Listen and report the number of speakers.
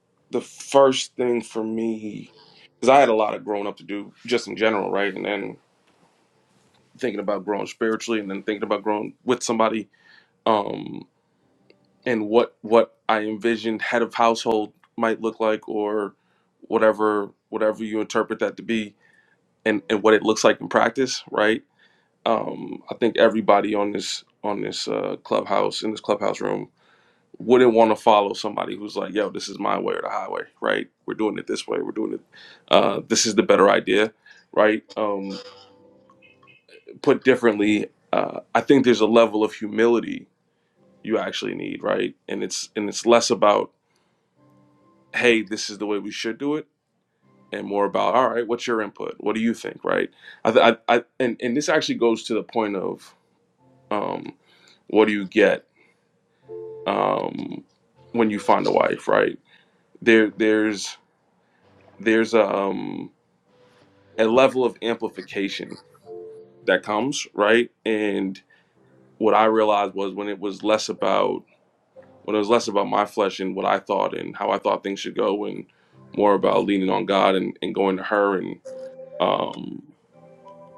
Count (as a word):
one